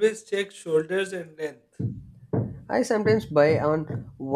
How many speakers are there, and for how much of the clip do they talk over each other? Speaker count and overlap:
two, no overlap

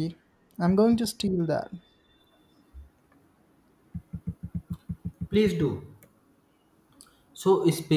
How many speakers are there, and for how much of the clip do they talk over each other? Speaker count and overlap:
two, no overlap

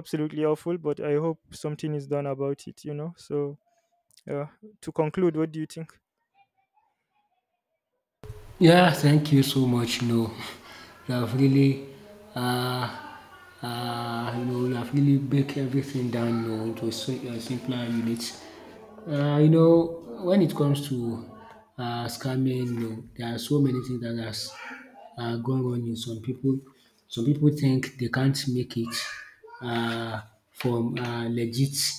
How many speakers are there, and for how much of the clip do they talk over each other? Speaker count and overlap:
two, no overlap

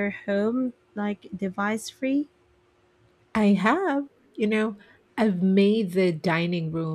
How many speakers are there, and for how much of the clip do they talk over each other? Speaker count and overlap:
two, no overlap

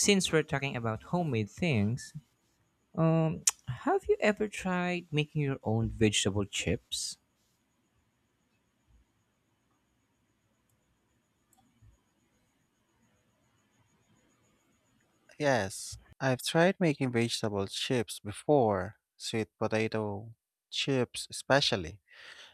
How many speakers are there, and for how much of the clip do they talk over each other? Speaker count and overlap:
two, no overlap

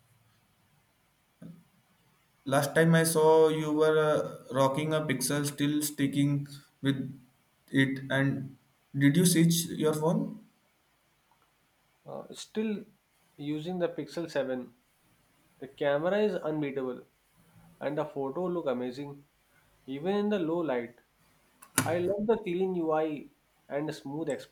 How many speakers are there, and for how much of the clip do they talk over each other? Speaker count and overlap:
two, no overlap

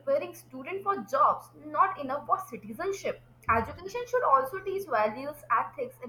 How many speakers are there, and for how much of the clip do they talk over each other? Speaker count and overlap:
one, no overlap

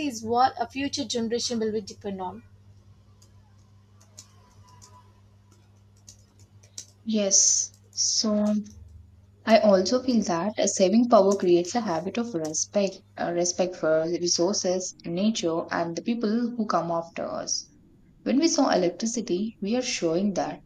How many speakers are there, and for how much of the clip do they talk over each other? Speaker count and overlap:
two, no overlap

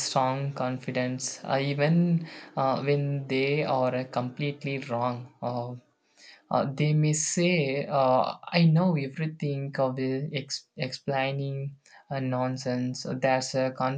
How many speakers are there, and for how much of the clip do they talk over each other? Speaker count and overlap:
one, no overlap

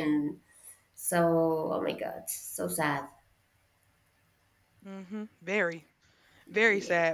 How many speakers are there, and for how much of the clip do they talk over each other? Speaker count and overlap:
two, about 4%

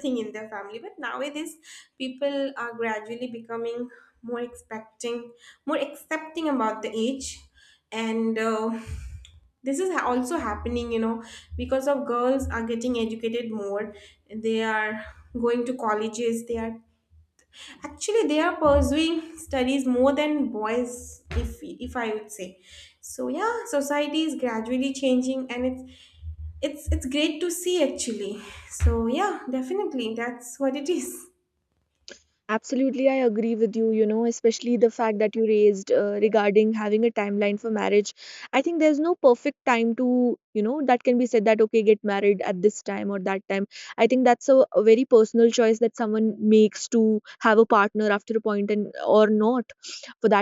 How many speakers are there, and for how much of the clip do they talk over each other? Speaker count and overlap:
two, no overlap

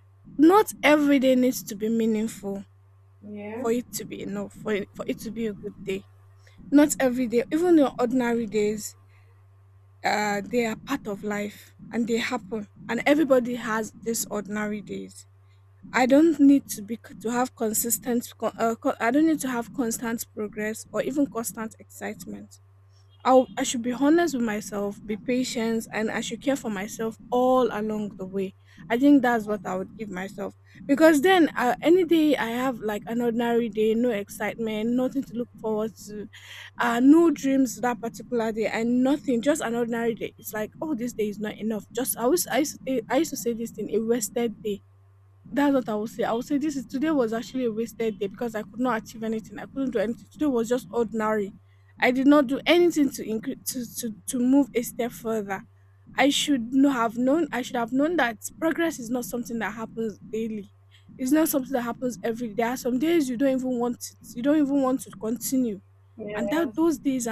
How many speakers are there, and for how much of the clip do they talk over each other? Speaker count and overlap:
two, about 1%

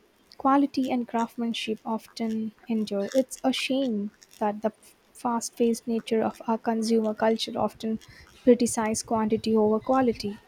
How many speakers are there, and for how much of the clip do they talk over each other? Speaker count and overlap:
one, no overlap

